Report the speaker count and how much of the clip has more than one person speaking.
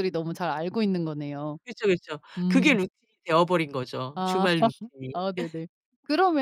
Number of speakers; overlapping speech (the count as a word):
two, about 12%